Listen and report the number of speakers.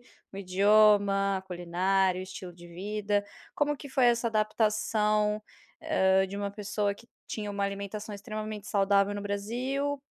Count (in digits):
1